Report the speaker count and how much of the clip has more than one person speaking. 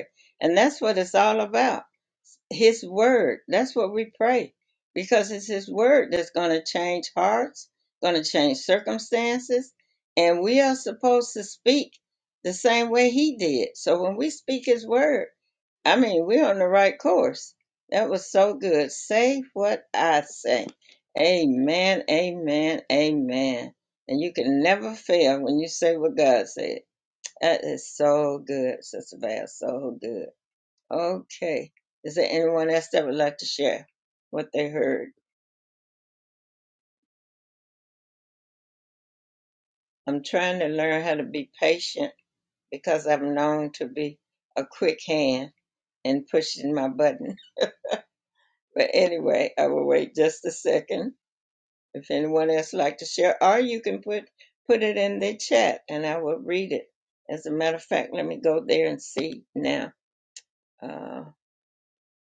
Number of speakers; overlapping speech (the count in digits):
1, no overlap